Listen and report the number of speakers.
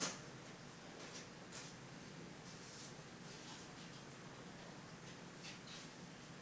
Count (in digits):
0